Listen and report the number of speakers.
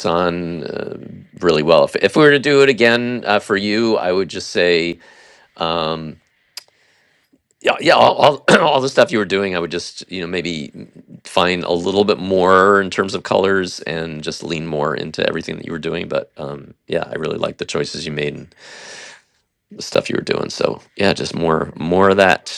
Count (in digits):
1